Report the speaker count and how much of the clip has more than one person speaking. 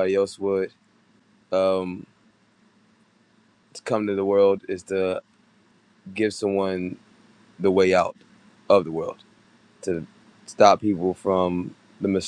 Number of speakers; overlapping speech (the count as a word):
one, no overlap